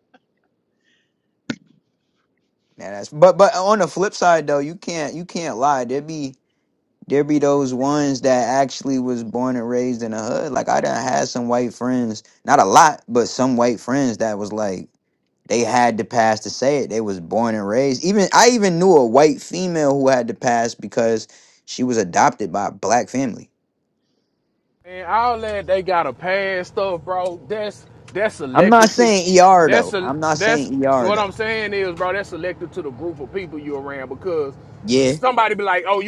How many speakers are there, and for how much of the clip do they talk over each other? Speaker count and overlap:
2, about 6%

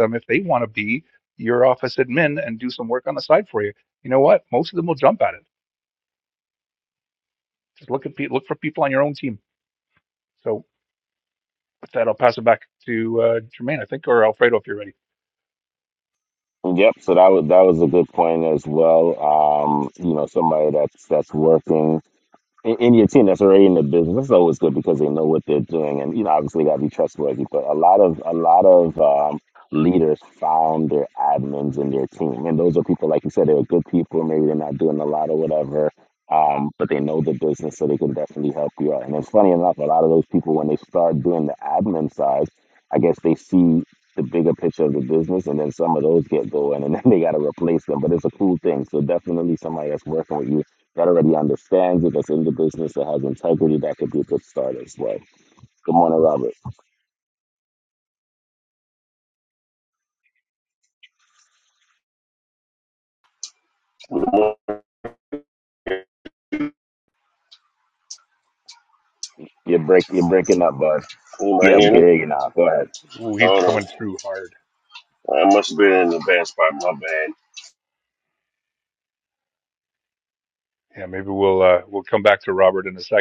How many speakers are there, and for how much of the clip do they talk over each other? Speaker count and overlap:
3, about 1%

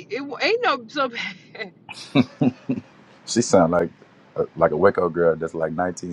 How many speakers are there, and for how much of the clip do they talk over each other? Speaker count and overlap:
2, no overlap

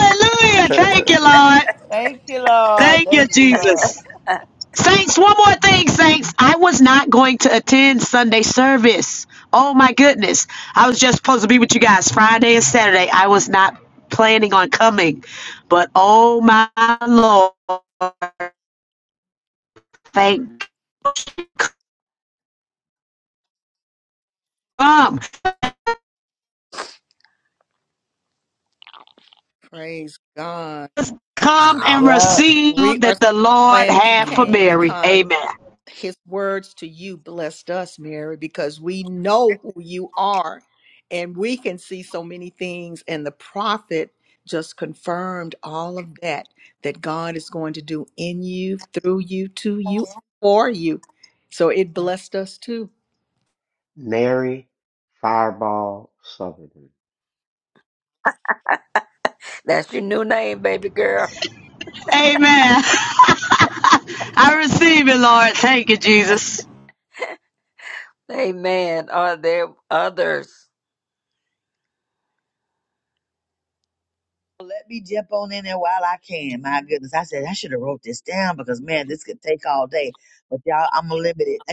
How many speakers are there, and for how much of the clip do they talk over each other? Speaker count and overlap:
6, about 5%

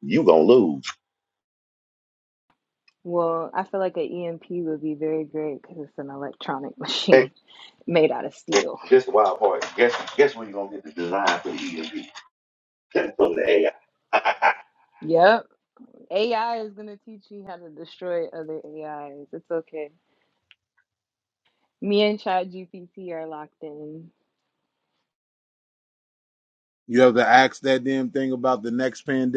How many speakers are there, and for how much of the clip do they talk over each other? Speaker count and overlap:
3, about 1%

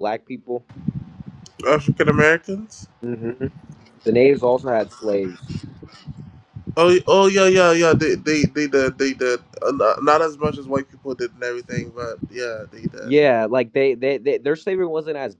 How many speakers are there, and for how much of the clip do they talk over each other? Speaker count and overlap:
2, about 1%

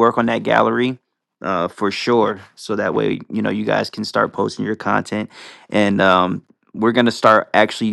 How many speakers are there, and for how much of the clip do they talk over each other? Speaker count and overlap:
1, no overlap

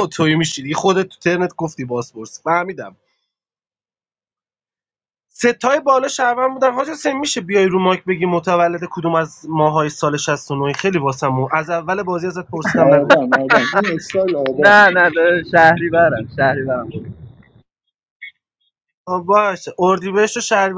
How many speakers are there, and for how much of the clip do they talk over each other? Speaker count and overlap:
3, about 3%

